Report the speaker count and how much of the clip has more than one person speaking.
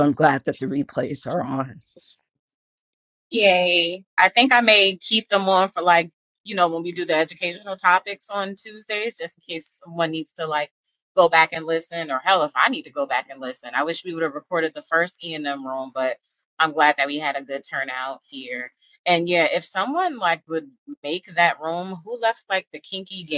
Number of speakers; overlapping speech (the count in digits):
2, no overlap